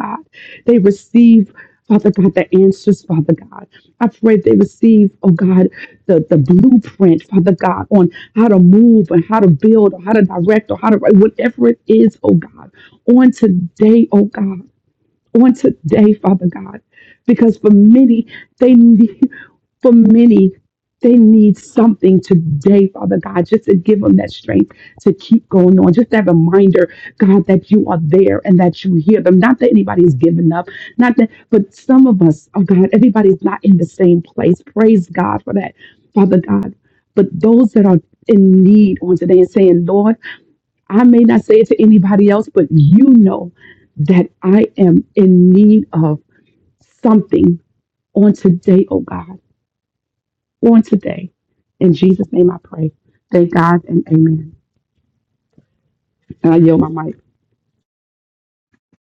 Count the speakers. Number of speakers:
one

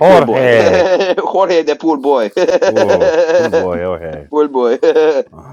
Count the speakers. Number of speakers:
two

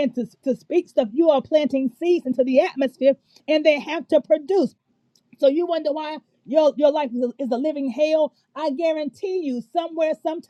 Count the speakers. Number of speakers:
one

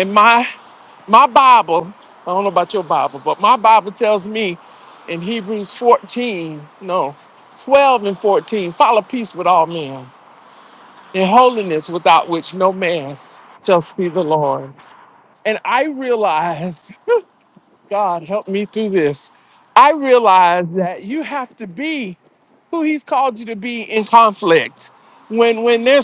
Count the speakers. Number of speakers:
one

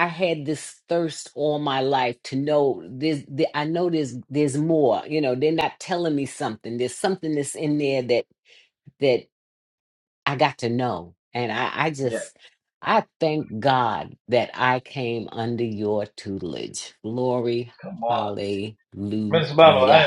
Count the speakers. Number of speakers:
two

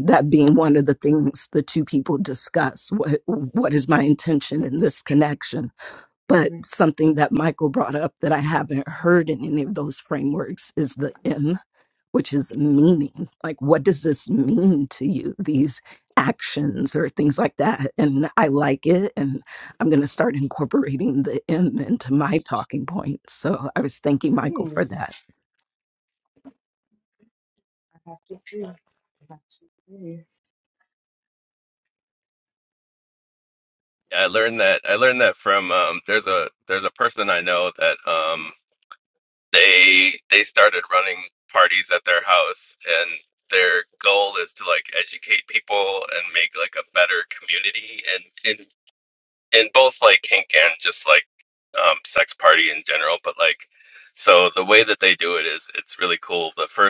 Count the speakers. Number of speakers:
three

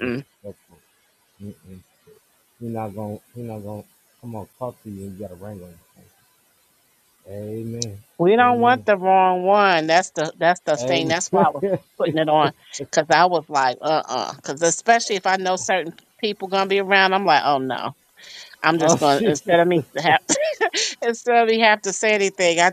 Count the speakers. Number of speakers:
two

